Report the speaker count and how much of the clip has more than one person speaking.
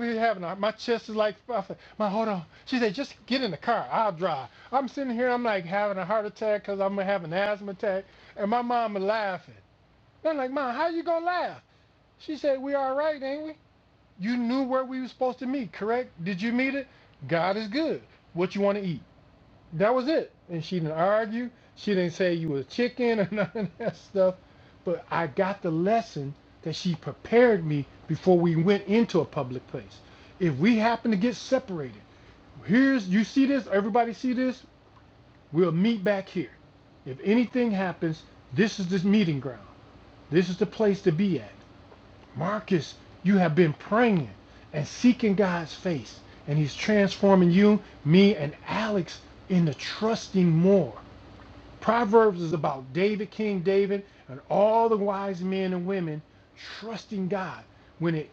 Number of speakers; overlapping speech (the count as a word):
one, no overlap